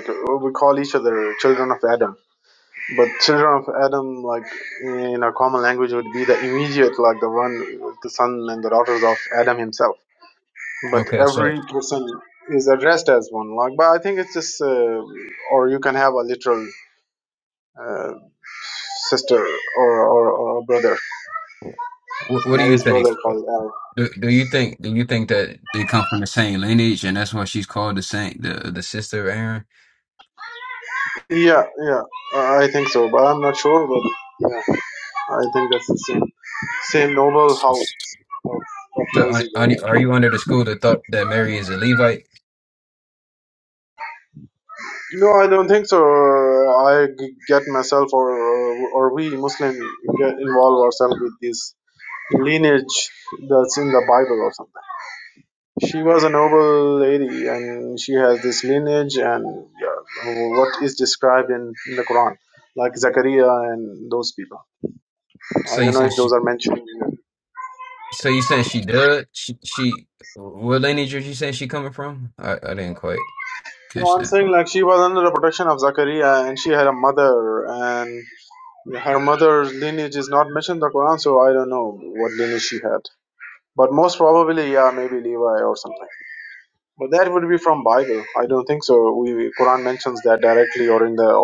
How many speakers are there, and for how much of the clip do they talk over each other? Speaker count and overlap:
2, about 3%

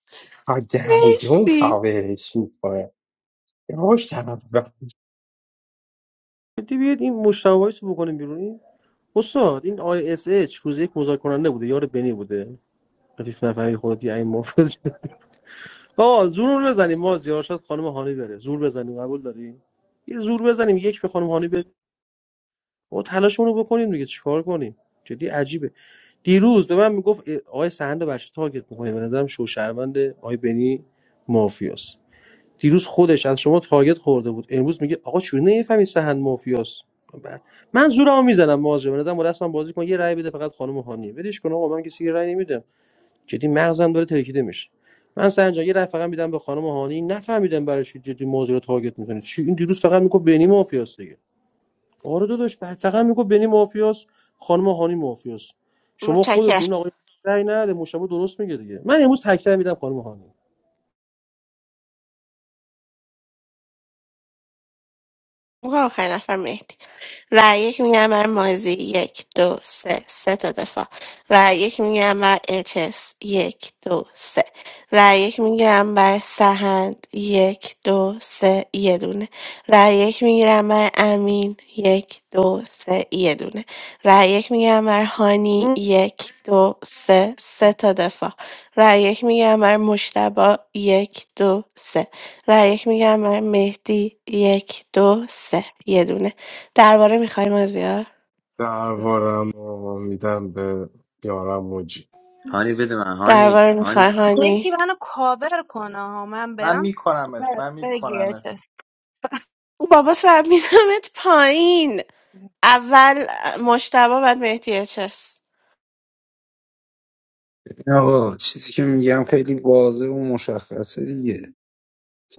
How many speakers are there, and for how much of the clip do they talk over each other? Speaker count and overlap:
7, about 3%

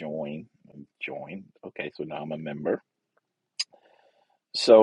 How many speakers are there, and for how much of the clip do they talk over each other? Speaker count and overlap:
1, no overlap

